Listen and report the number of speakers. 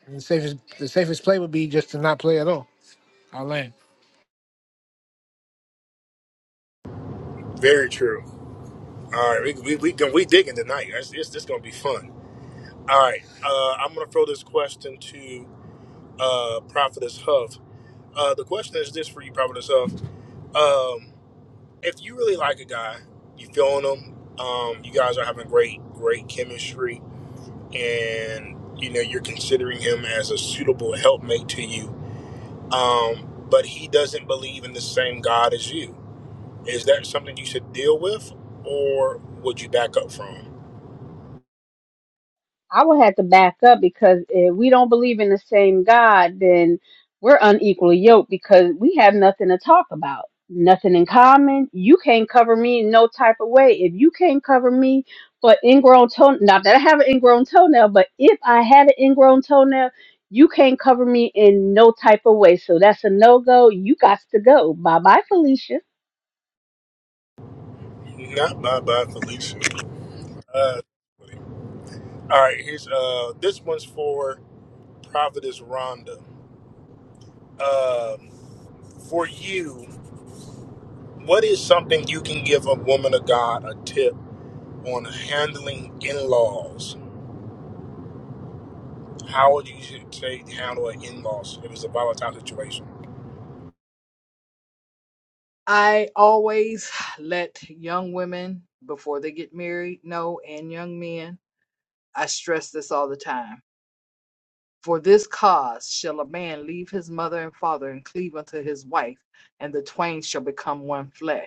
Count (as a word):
four